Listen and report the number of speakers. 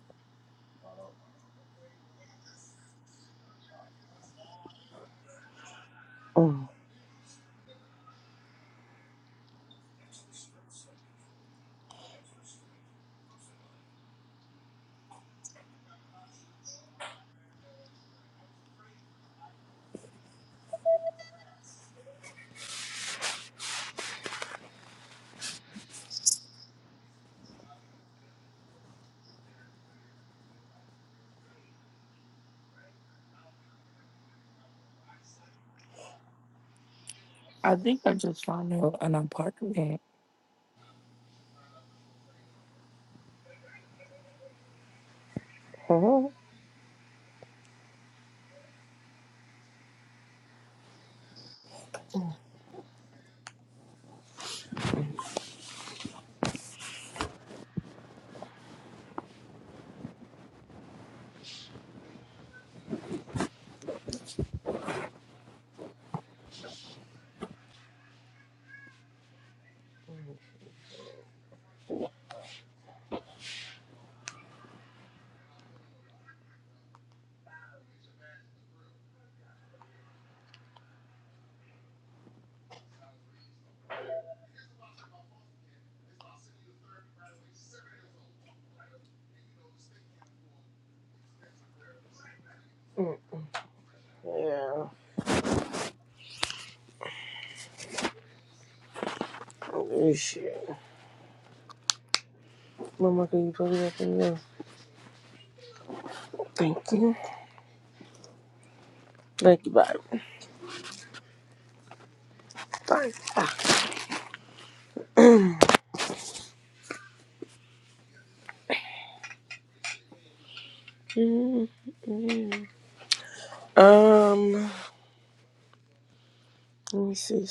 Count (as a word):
two